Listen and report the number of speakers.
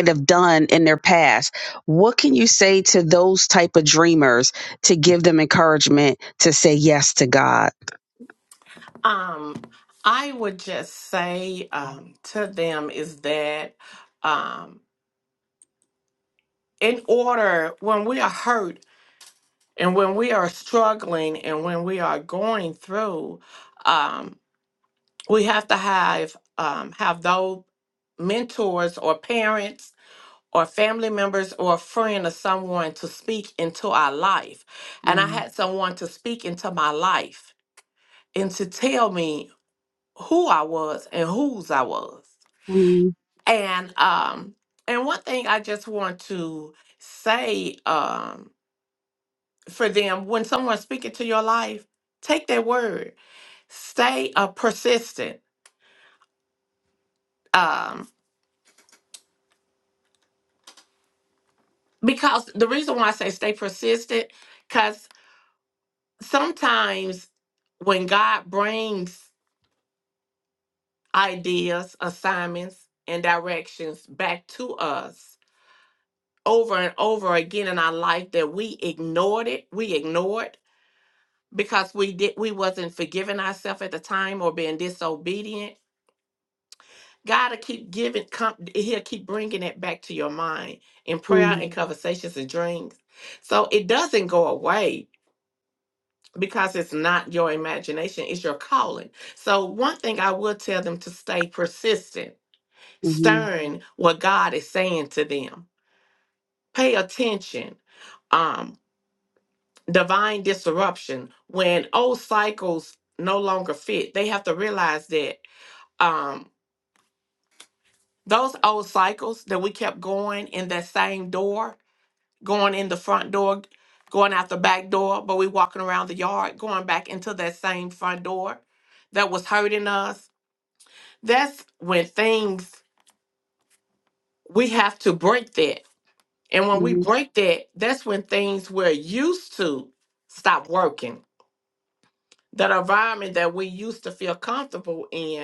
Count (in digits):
2